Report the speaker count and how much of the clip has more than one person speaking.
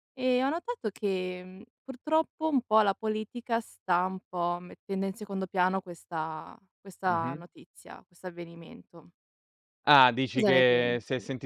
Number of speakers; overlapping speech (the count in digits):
2, about 11%